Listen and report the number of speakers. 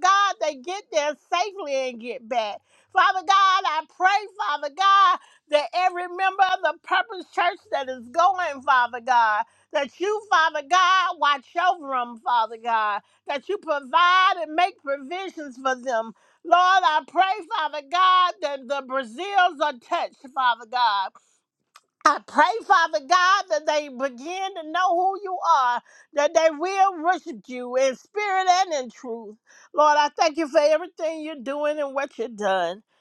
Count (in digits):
1